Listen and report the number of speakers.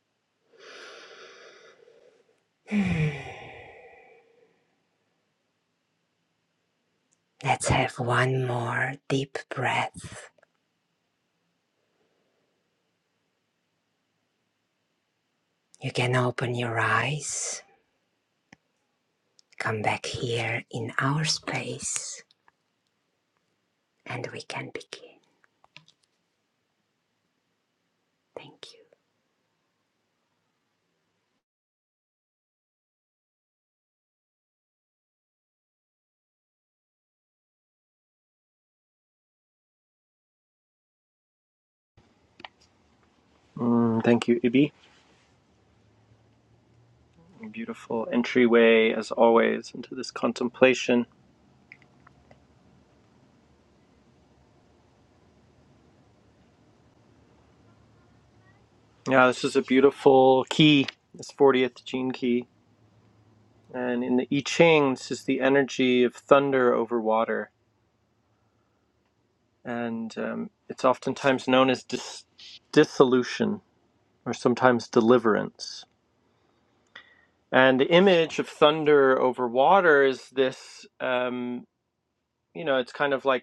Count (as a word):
two